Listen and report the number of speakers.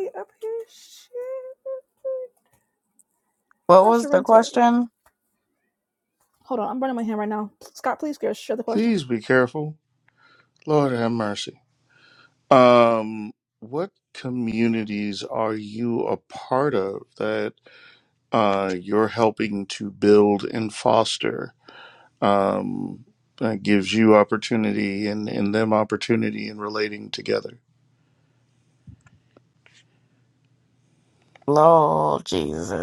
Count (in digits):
3